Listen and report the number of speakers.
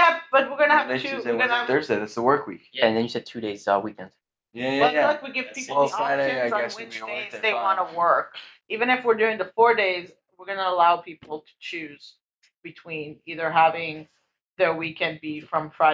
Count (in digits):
3